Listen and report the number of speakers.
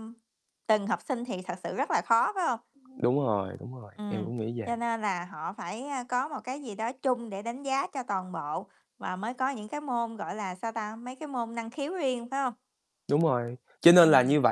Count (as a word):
two